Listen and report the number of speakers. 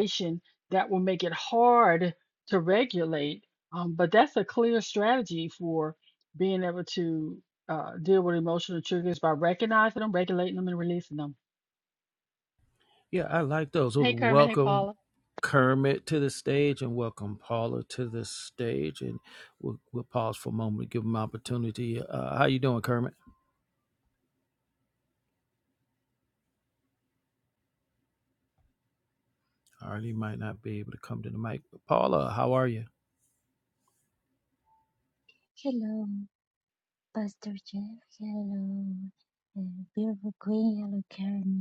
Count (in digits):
3